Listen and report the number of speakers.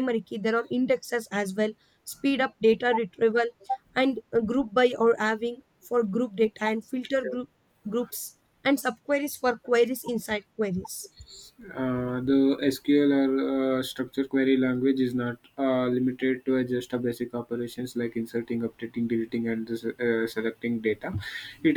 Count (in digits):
2